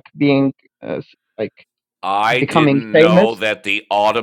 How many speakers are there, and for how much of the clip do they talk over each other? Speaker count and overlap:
2, about 23%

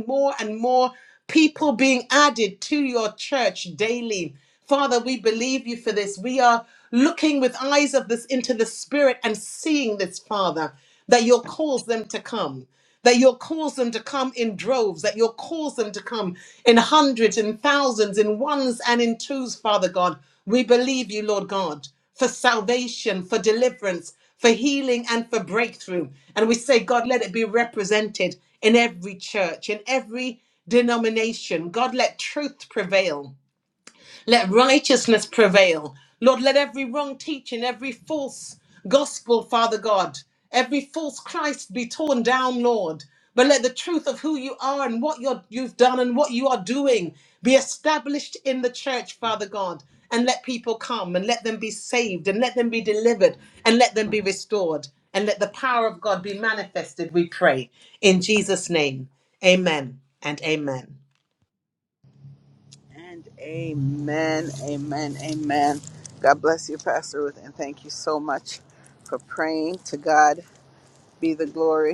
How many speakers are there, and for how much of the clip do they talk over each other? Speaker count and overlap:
2, no overlap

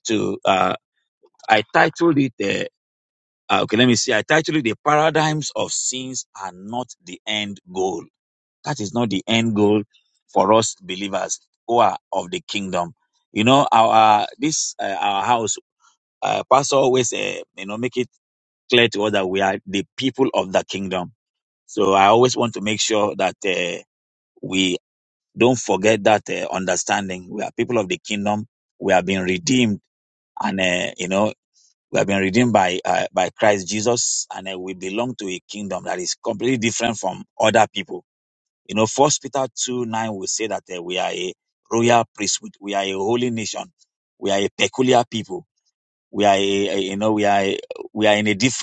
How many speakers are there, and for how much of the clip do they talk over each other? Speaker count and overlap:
1, no overlap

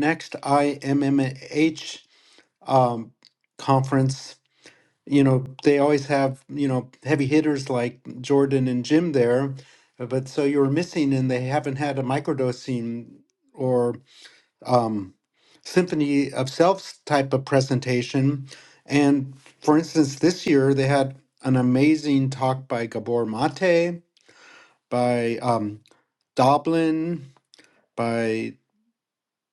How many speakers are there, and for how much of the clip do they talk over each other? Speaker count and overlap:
1, no overlap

